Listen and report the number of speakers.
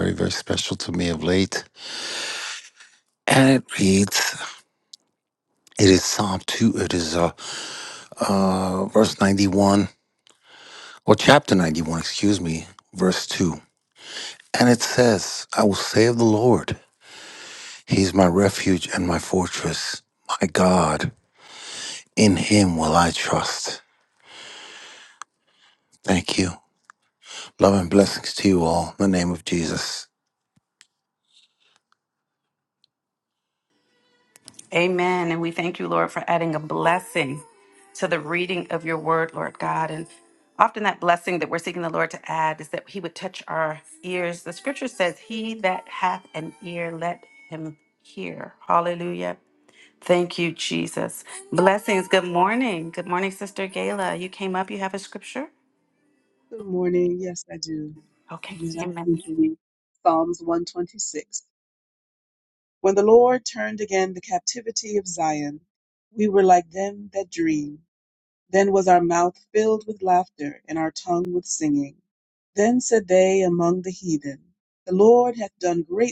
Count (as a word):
three